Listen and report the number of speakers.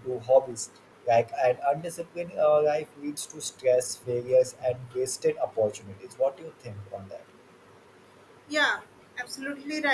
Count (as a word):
two